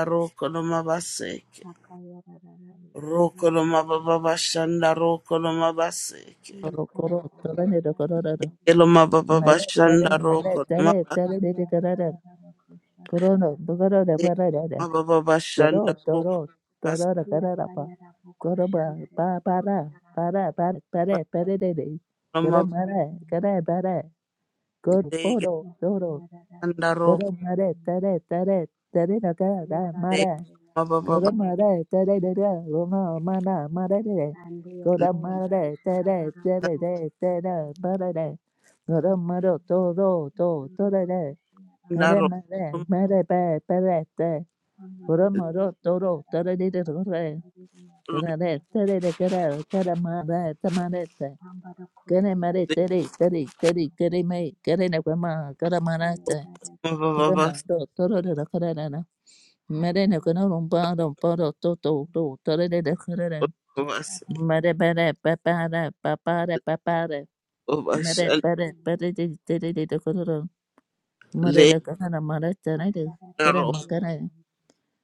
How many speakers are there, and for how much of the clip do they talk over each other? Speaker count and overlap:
3, about 38%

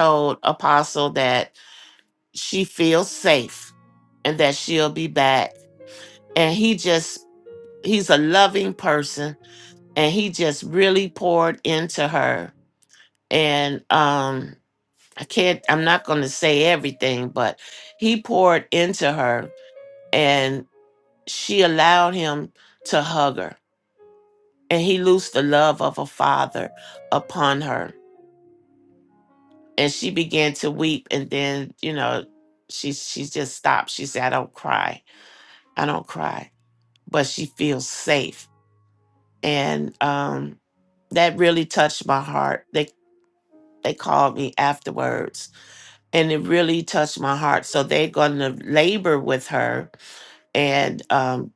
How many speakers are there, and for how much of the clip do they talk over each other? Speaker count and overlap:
1, no overlap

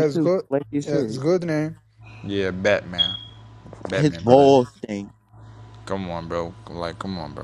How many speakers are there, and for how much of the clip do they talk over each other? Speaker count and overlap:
3, about 19%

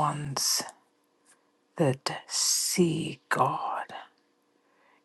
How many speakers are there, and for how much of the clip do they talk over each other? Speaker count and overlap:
1, no overlap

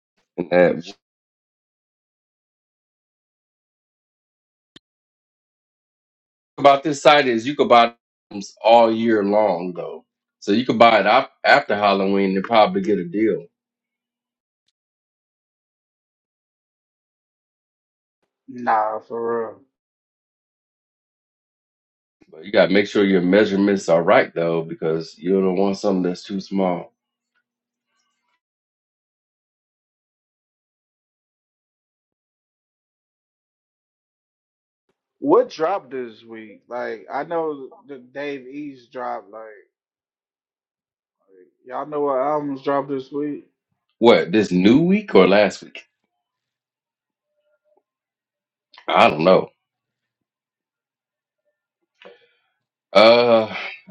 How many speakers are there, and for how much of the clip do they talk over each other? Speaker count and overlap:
2, no overlap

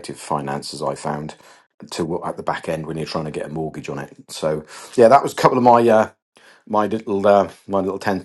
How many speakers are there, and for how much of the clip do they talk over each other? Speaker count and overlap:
1, no overlap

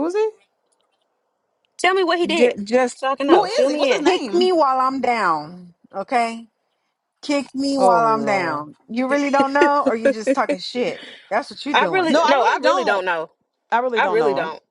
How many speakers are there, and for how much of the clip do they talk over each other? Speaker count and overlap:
3, about 29%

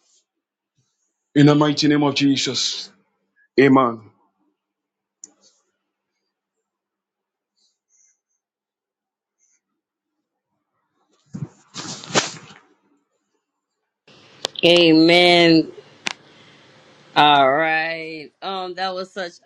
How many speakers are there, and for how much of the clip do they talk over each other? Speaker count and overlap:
2, no overlap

